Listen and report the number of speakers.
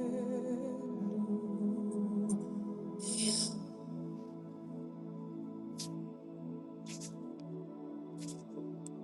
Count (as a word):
zero